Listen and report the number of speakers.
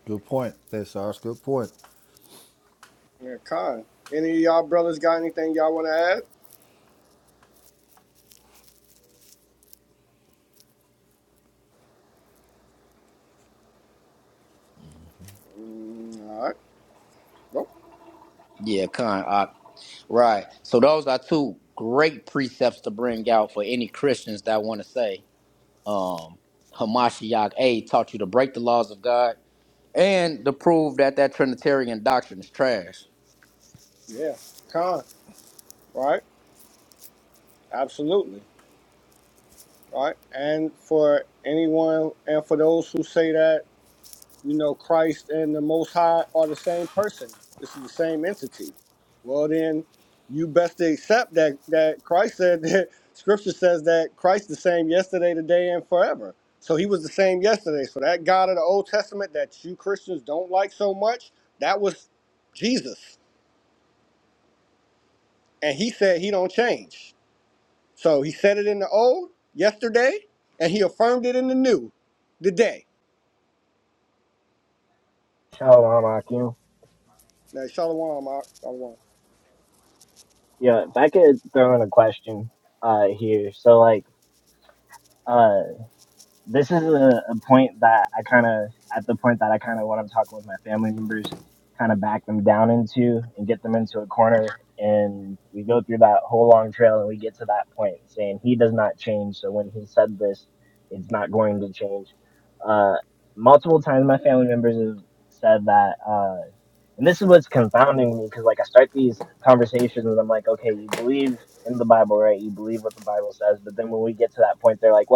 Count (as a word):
four